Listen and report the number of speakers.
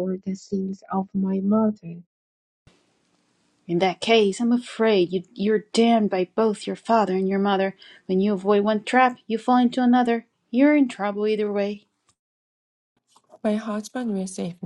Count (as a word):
three